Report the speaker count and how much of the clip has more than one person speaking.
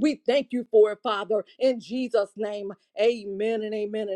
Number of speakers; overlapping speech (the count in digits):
1, no overlap